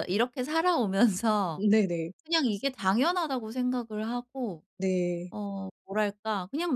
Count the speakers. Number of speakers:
2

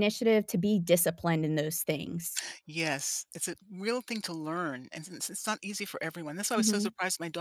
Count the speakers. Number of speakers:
2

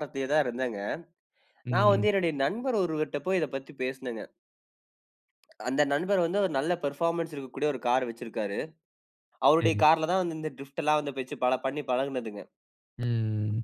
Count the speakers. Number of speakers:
2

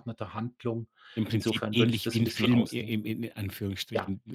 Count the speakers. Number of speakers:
2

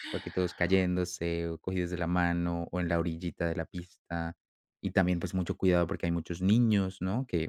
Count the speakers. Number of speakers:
1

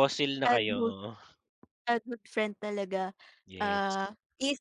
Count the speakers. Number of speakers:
2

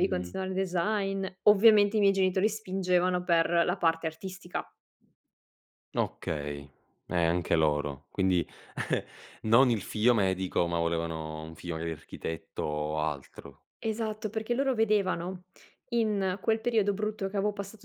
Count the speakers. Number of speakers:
2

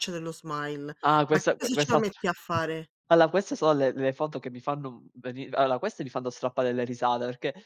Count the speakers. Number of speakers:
2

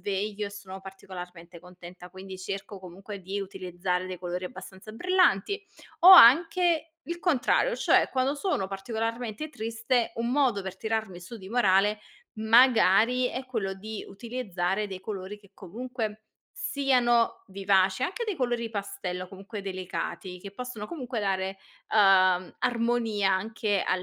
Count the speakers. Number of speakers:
1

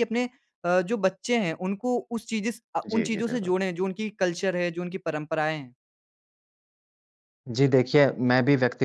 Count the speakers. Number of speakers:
2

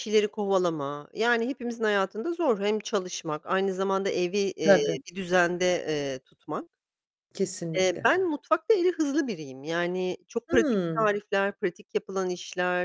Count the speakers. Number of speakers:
2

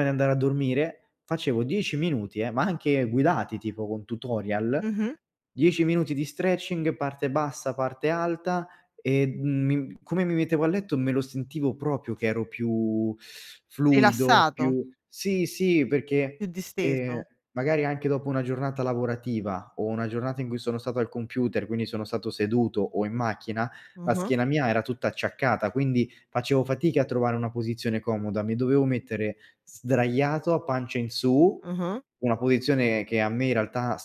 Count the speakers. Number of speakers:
2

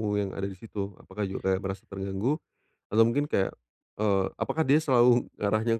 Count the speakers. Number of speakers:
1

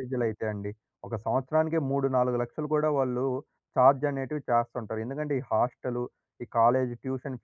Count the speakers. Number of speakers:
1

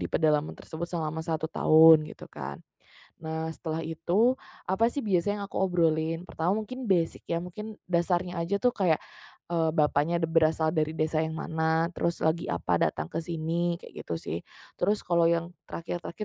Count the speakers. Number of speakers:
1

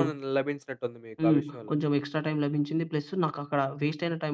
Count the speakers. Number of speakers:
2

